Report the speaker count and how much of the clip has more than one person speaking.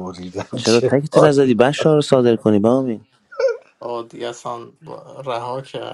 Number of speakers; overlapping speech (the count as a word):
three, about 16%